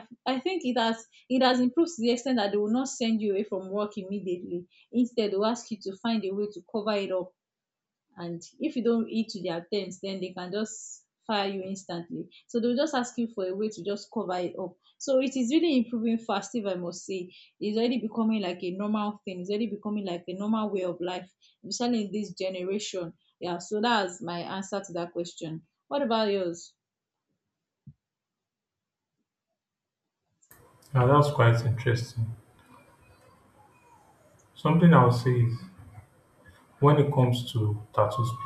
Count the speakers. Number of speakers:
2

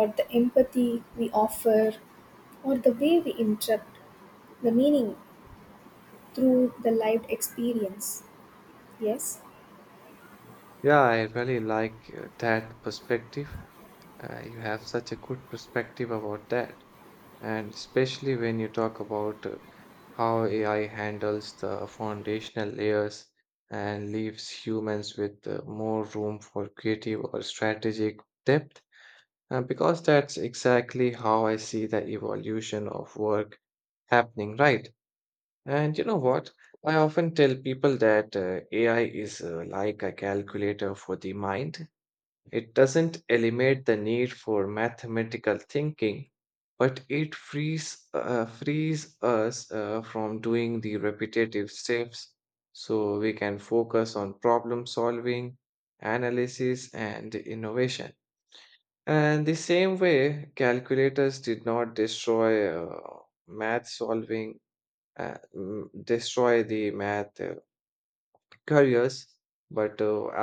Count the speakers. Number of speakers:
2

